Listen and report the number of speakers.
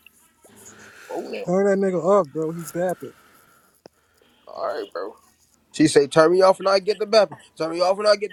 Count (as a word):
three